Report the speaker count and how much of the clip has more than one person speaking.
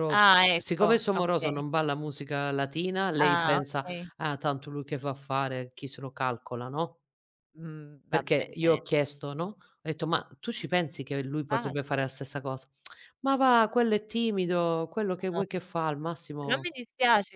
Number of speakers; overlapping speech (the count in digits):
2, about 23%